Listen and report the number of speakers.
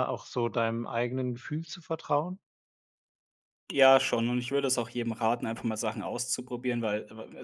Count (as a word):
two